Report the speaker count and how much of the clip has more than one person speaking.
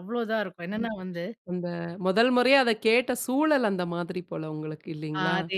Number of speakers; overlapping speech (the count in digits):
2, about 5%